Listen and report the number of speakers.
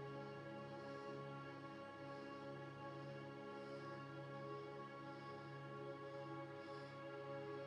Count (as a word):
zero